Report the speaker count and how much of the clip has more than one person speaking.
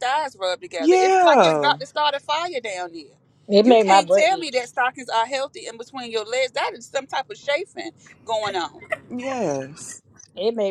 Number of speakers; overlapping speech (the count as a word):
three, about 18%